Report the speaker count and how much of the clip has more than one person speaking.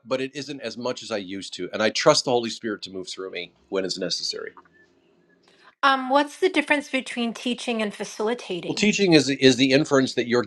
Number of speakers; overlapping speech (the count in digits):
2, about 1%